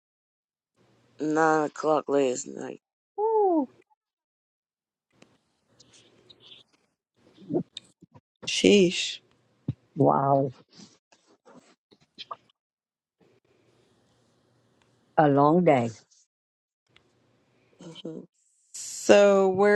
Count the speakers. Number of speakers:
three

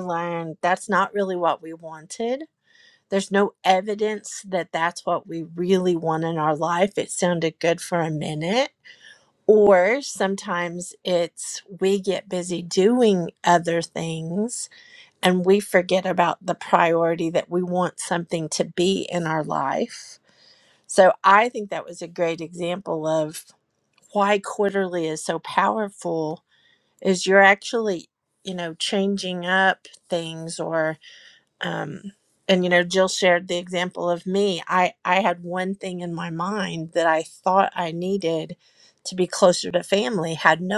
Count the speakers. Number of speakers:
one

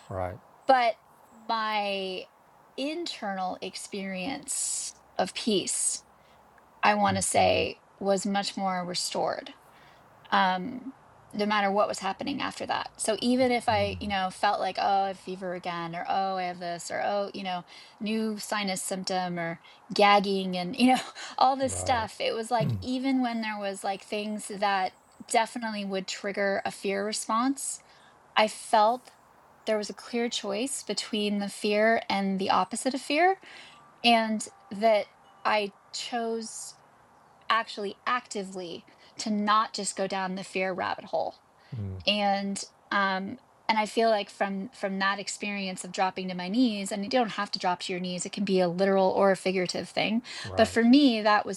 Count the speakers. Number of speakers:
two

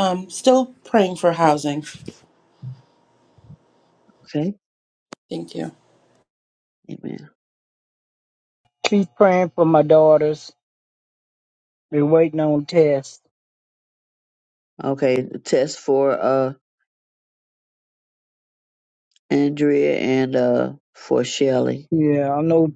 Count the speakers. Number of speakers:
three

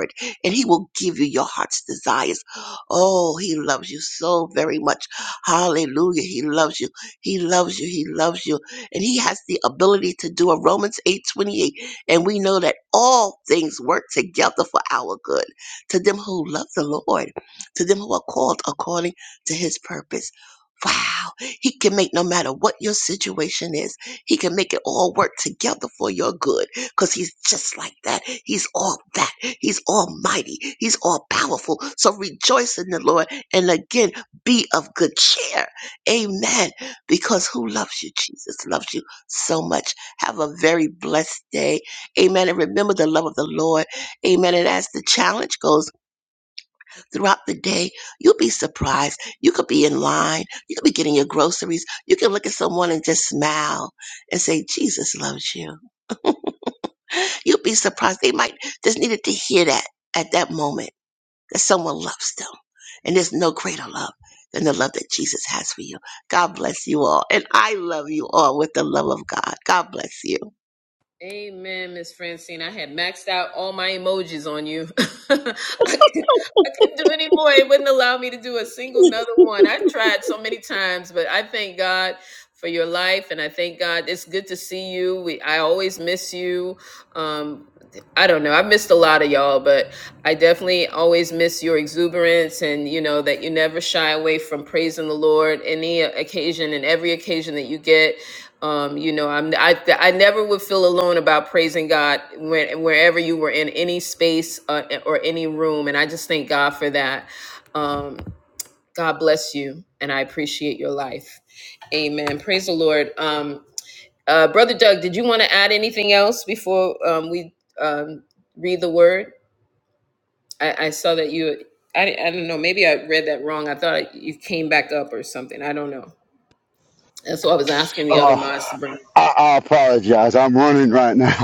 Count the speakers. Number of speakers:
three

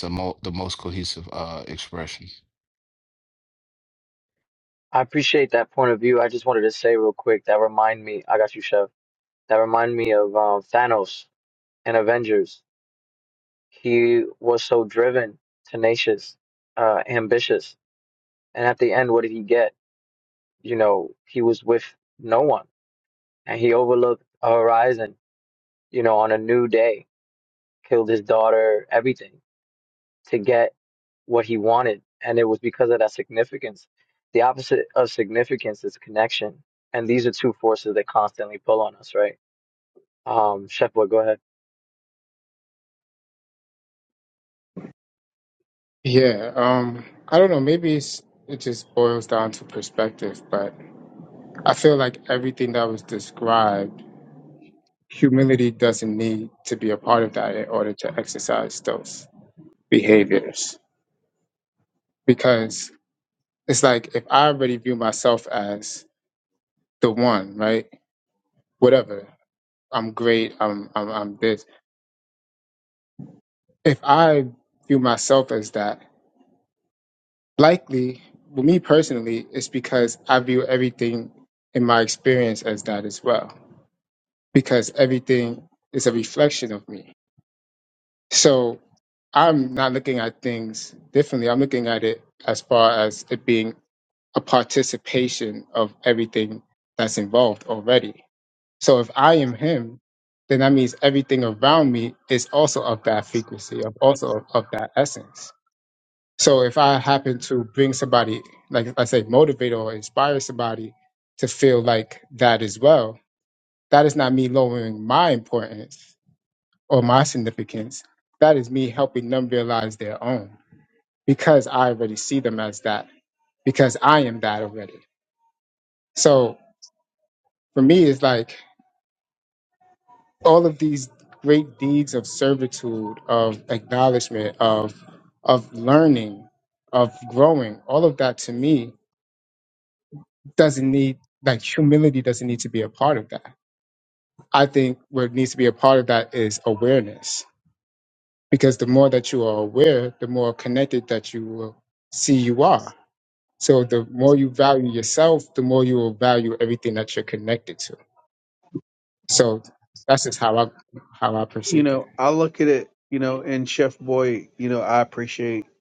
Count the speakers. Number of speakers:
four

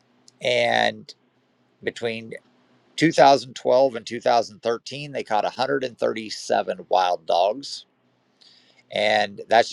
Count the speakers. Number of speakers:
one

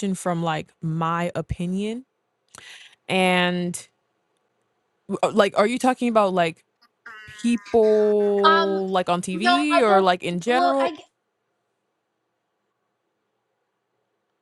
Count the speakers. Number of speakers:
two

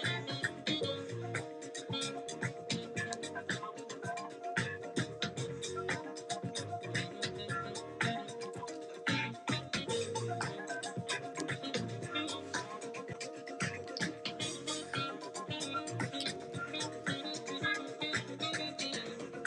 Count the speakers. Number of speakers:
zero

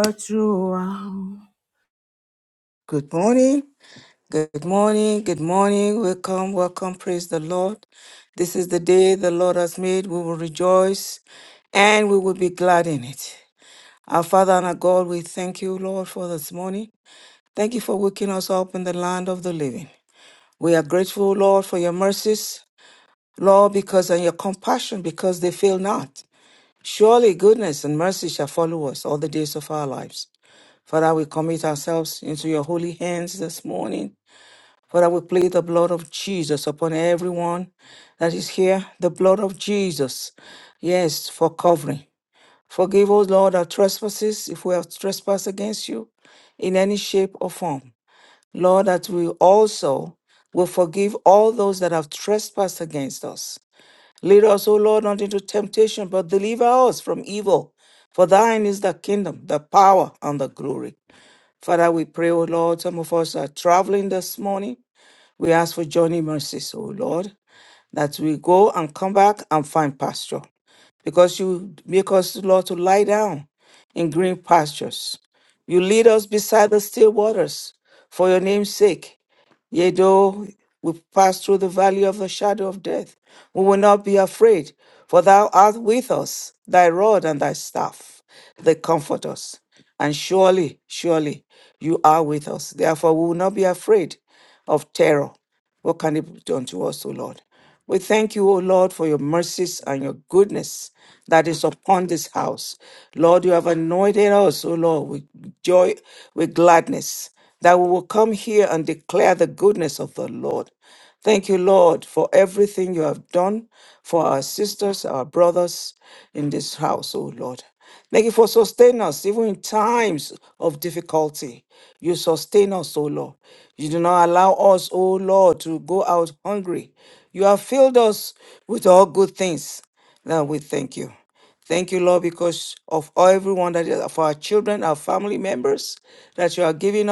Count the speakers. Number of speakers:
one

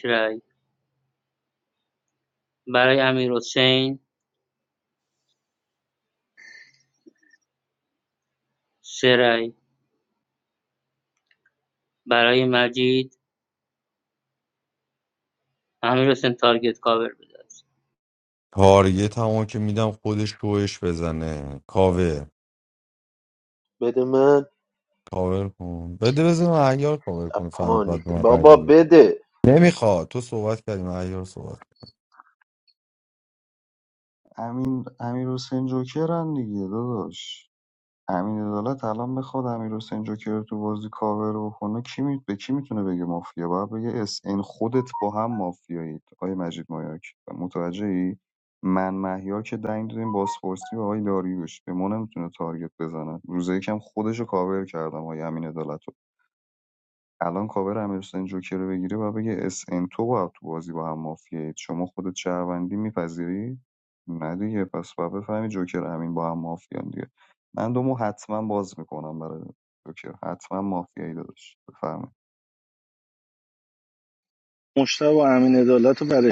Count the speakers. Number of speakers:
five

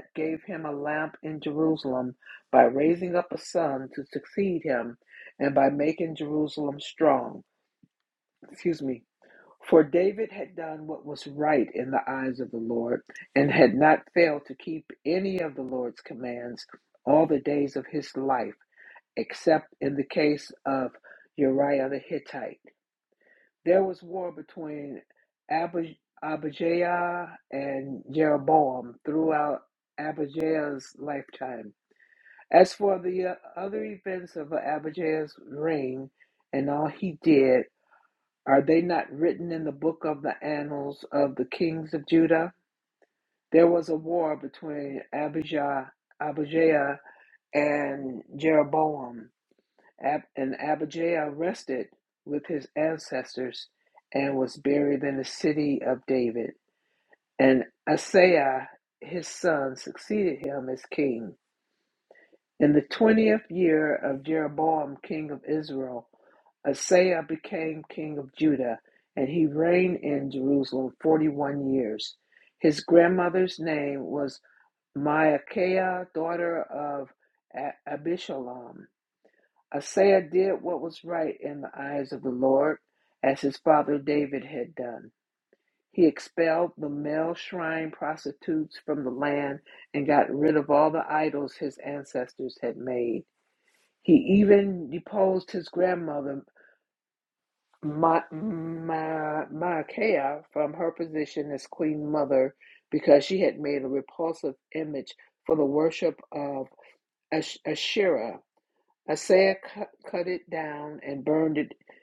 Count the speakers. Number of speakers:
one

